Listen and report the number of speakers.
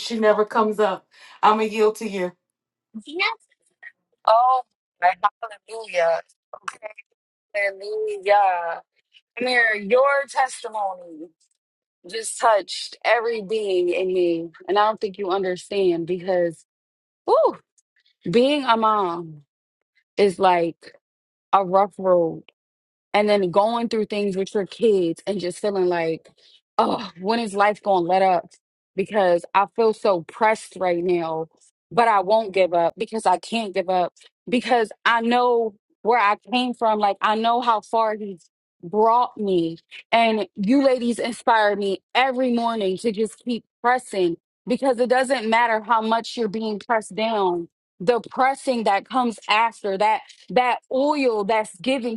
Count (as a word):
two